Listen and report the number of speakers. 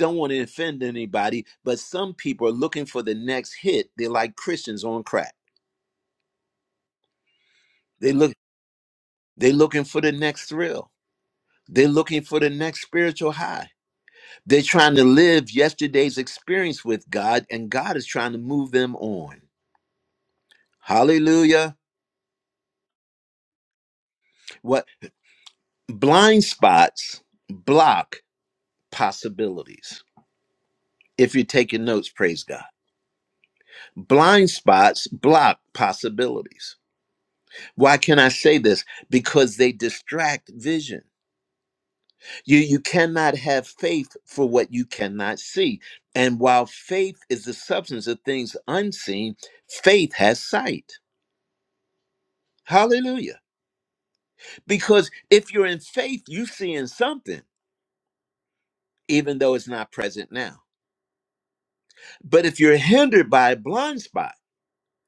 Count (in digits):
1